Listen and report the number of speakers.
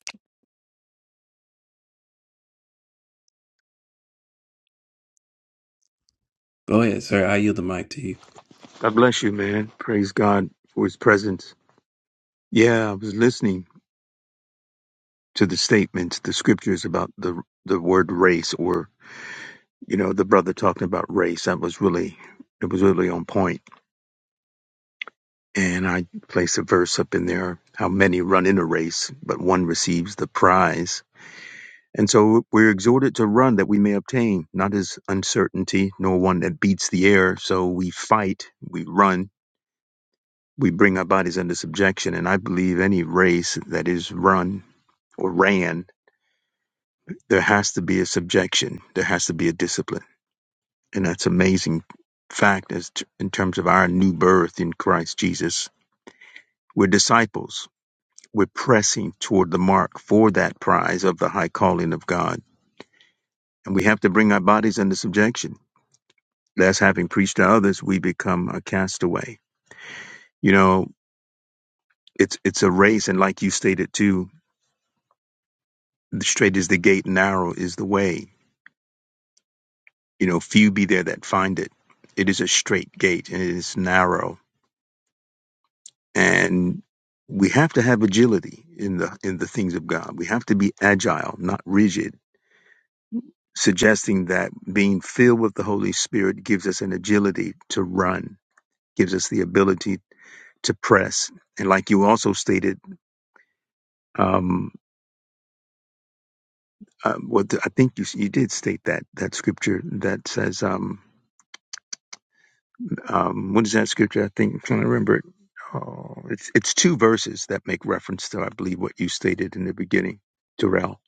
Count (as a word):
two